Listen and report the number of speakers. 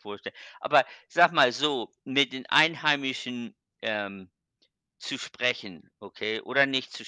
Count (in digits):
1